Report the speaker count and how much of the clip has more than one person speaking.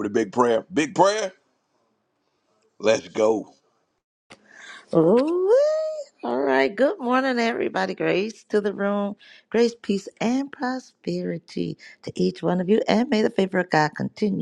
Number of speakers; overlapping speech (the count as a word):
two, no overlap